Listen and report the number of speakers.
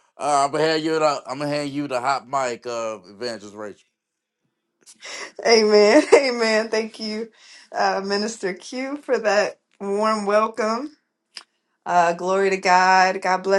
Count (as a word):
two